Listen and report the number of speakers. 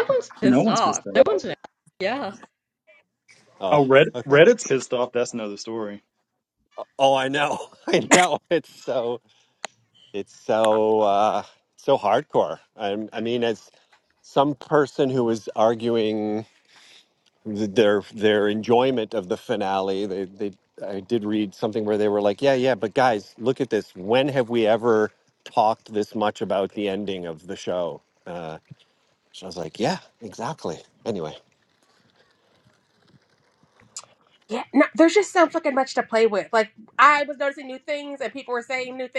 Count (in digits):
4